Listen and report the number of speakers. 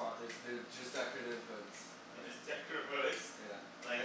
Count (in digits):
2